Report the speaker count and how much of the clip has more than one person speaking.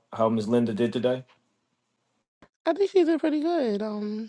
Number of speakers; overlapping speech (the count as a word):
two, no overlap